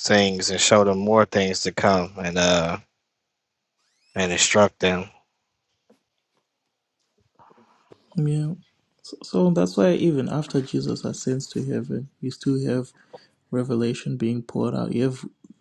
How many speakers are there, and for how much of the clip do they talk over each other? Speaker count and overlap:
2, no overlap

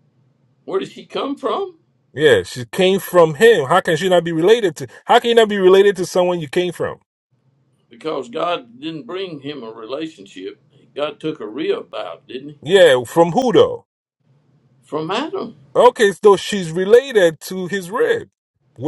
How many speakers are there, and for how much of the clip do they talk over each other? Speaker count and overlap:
2, no overlap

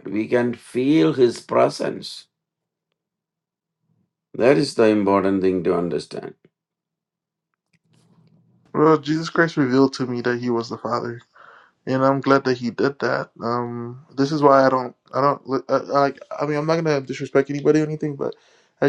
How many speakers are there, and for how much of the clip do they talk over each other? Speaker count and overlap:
2, no overlap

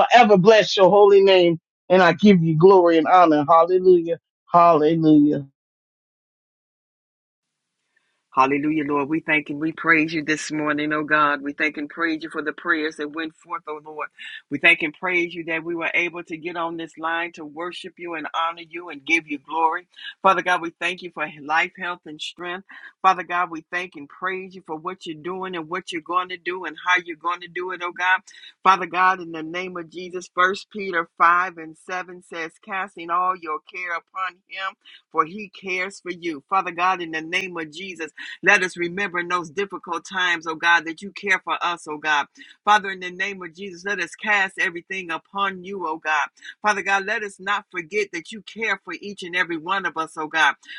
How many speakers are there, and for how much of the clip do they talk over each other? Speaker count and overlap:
2, no overlap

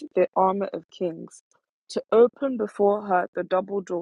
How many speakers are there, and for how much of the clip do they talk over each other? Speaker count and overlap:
1, no overlap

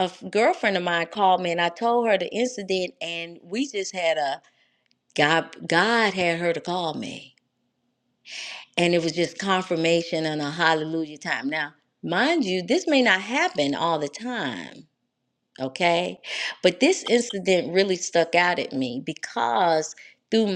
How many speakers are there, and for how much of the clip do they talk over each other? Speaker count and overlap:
1, no overlap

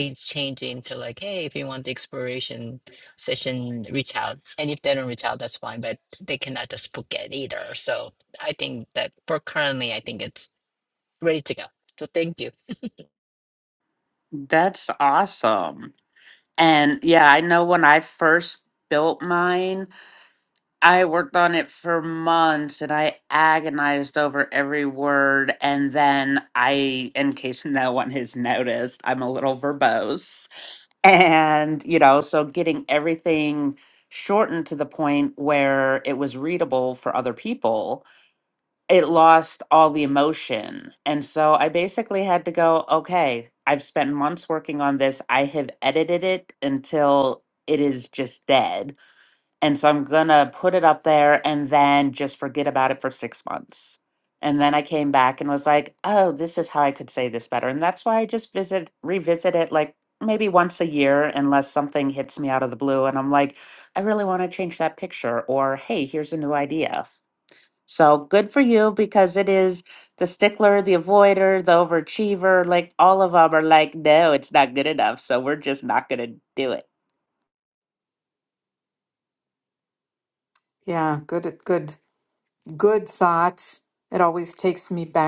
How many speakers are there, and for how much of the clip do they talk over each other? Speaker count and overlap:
3, no overlap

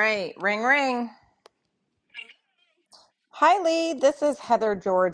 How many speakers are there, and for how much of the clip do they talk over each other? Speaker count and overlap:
1, no overlap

